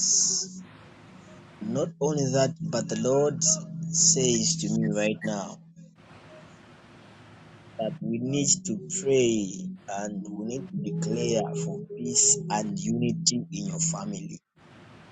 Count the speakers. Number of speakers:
one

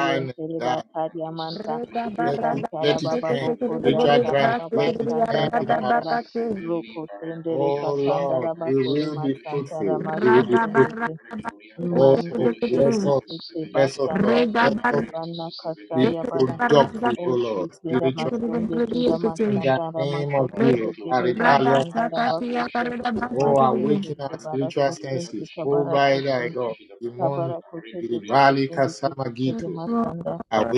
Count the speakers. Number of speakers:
three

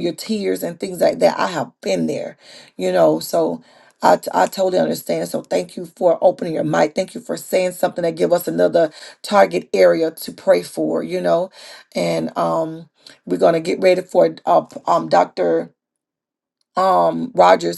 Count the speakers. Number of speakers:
one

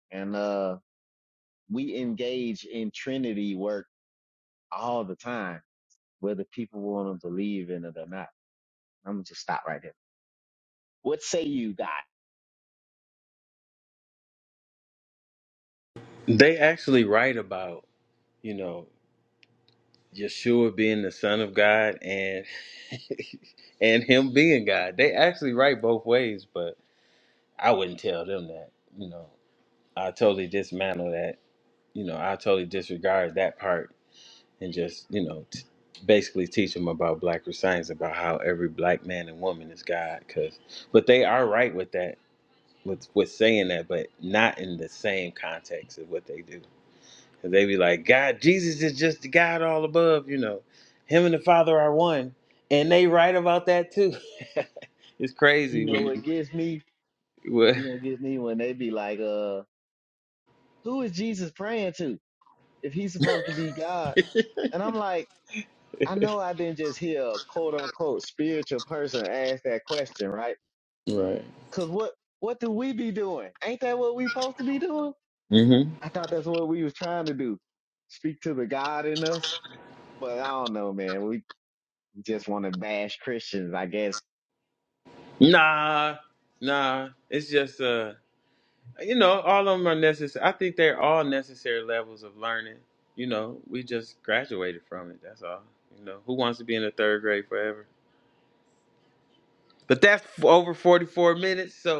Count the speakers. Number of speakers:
two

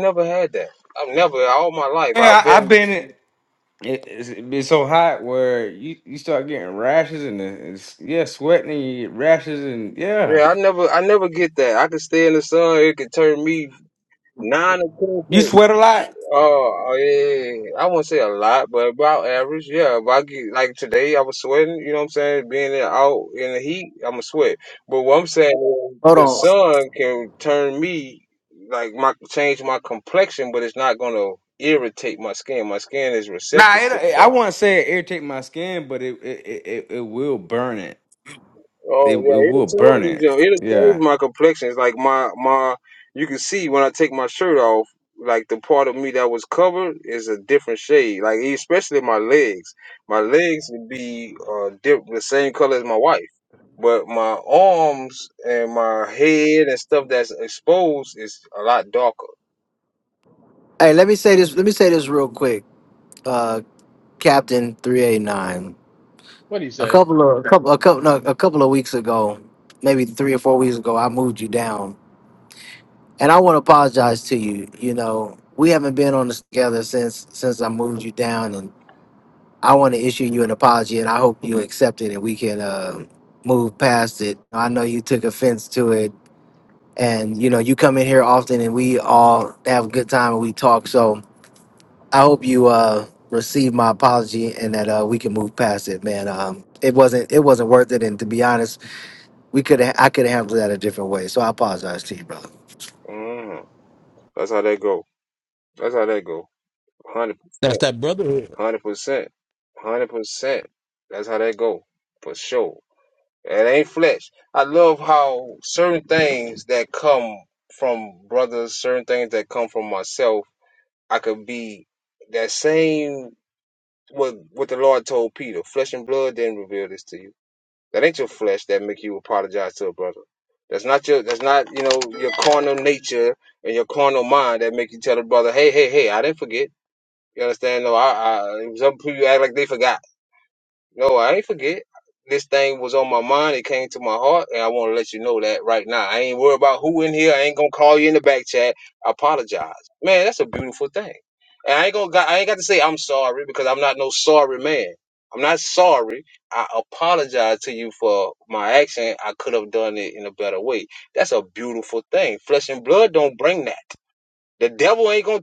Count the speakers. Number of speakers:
four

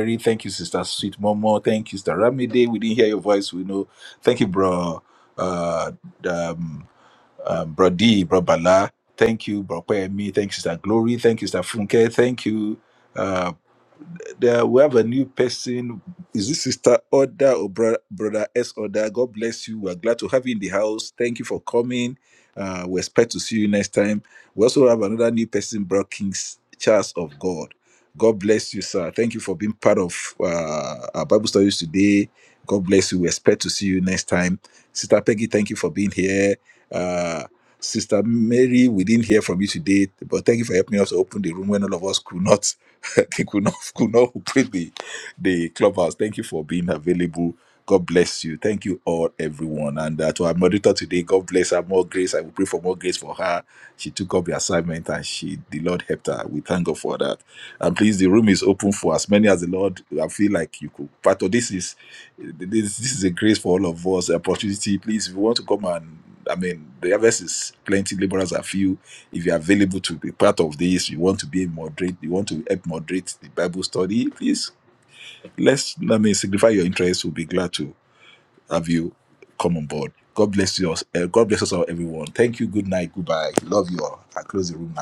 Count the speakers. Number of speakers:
one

